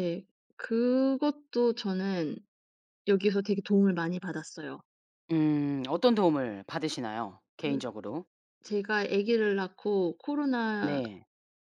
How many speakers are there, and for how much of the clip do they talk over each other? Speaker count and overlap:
two, about 4%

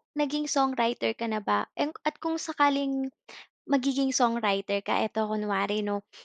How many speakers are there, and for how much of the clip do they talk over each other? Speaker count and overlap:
one, no overlap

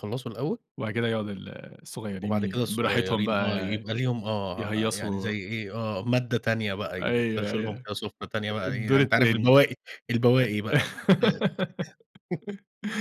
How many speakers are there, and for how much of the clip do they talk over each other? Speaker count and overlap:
two, about 29%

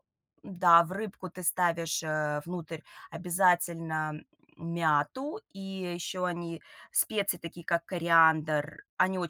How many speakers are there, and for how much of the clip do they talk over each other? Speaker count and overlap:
one, no overlap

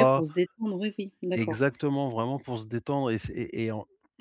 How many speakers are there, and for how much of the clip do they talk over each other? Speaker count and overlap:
two, about 11%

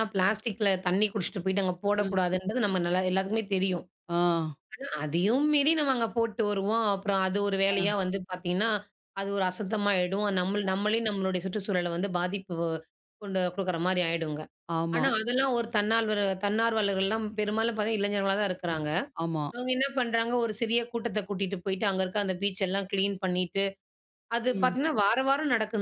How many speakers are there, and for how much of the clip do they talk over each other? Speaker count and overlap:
two, about 4%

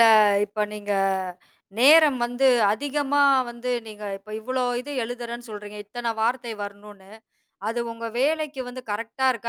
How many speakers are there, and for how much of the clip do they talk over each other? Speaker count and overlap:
one, no overlap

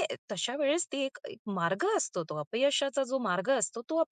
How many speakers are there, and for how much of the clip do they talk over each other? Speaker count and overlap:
one, no overlap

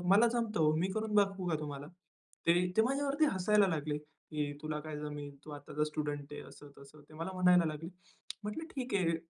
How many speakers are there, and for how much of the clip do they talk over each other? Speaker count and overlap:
one, no overlap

